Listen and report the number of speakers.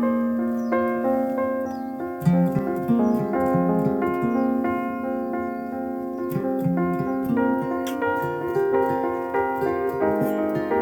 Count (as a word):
zero